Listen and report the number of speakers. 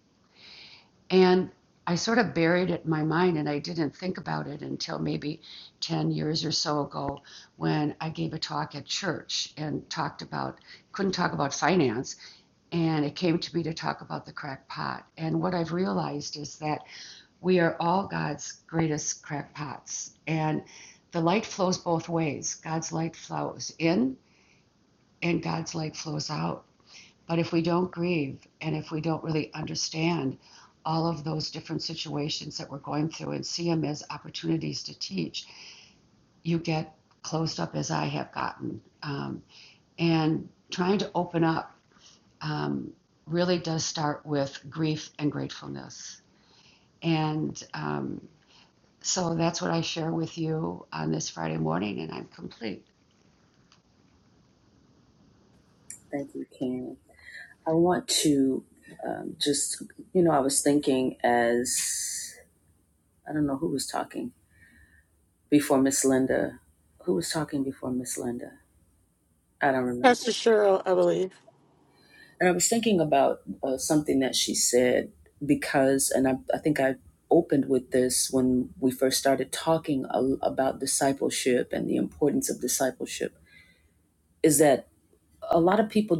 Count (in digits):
3